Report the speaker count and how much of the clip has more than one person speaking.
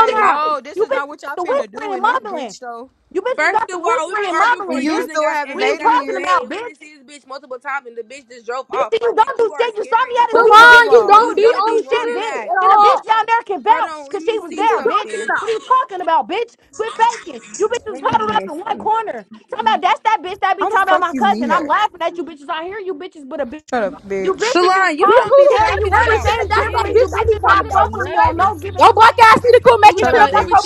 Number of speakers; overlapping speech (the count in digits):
4, about 62%